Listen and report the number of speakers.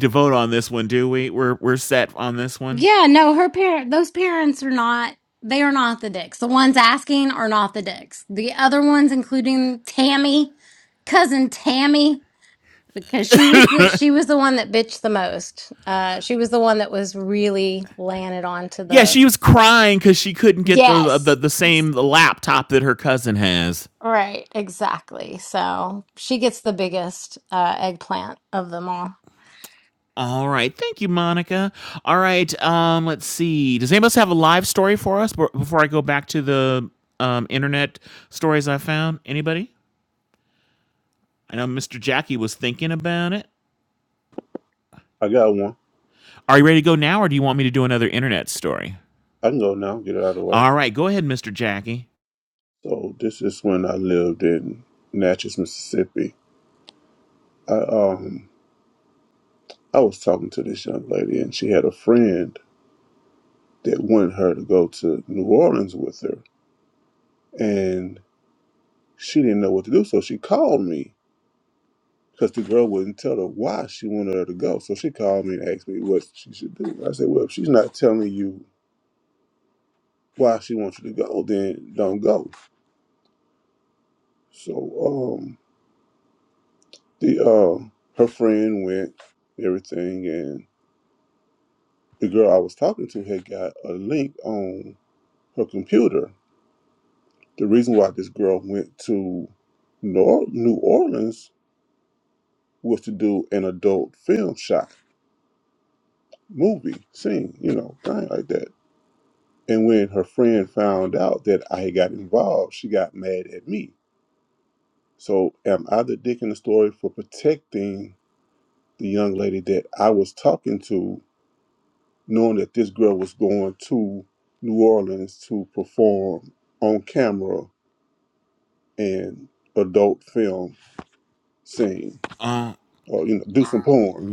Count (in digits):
3